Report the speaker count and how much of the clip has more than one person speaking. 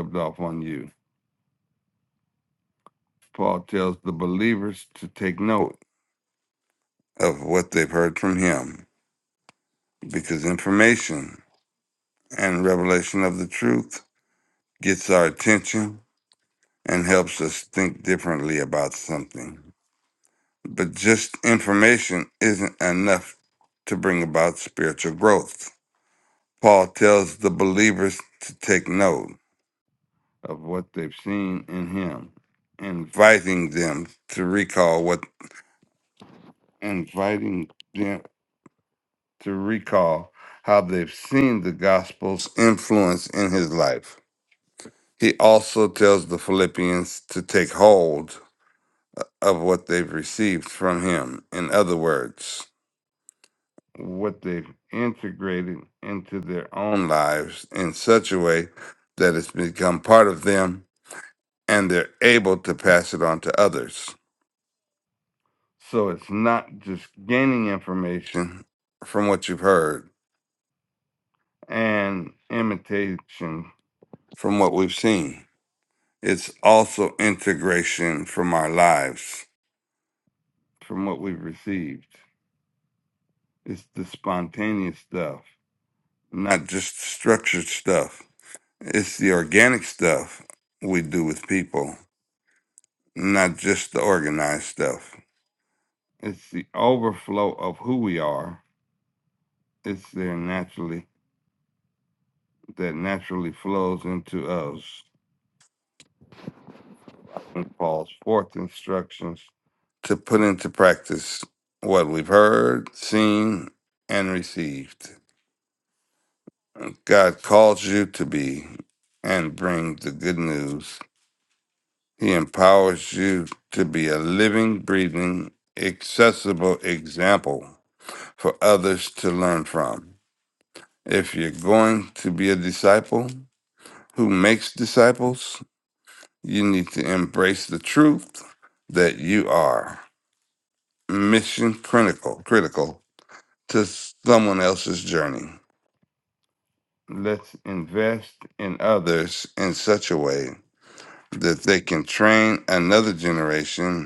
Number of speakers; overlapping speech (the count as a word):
one, no overlap